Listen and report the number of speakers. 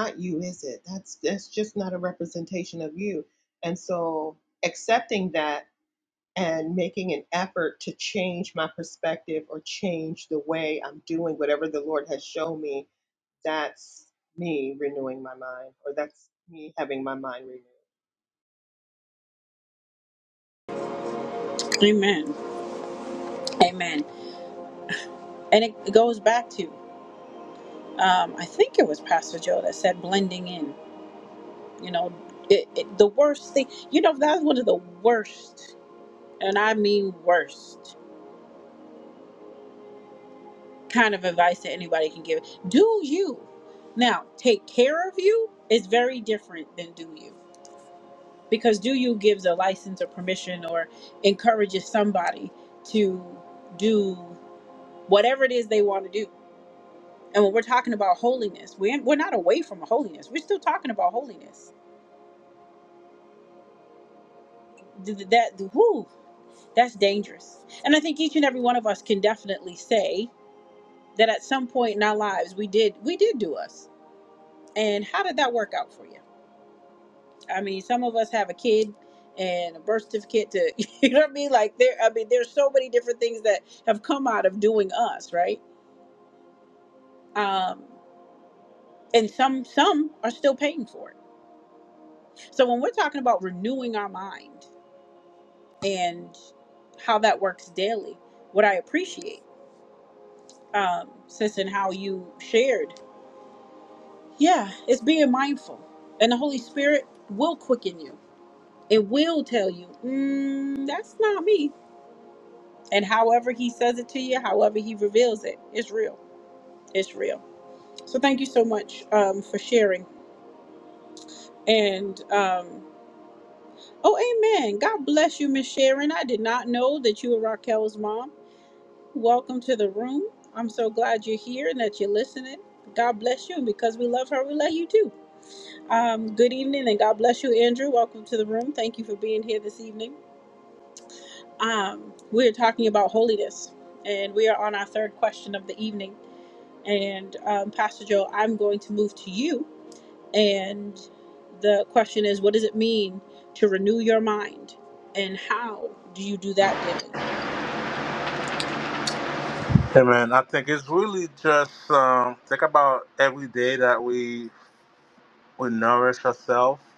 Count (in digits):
3